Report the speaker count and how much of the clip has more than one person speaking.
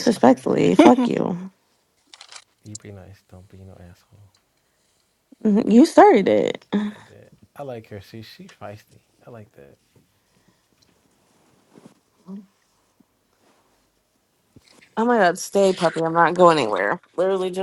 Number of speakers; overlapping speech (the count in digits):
2, about 1%